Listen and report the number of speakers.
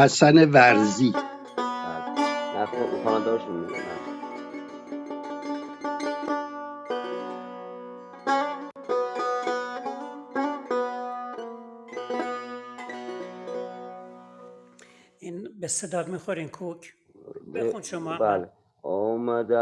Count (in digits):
3